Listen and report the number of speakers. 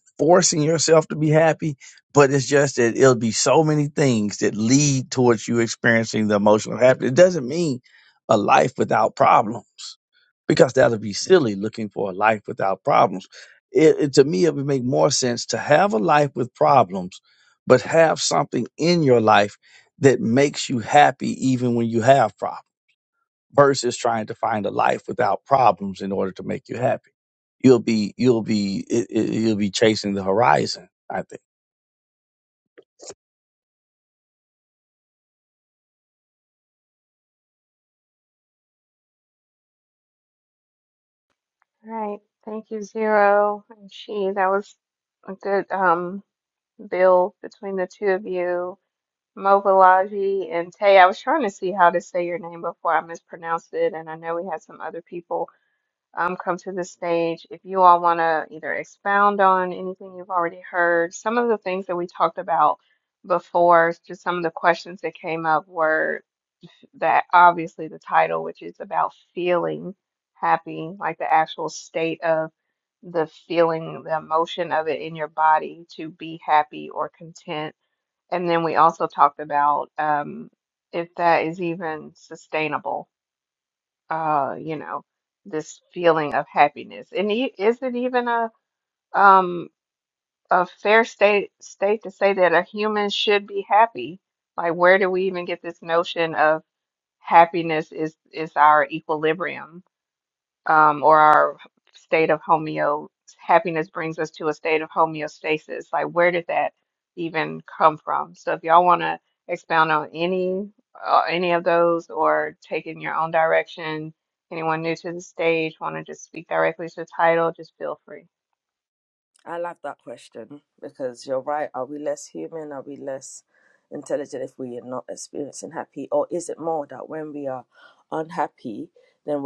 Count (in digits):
3